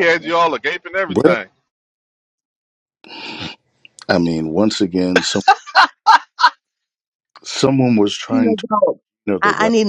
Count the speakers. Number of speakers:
3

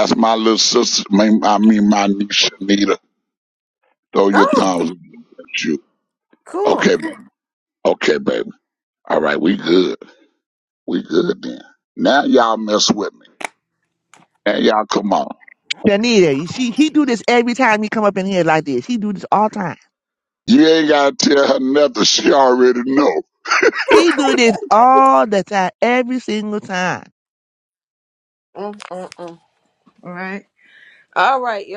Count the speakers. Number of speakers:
3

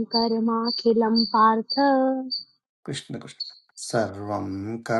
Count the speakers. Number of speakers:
2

